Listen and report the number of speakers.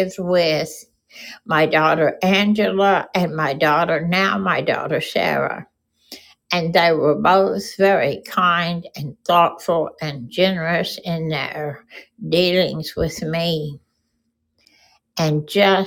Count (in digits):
1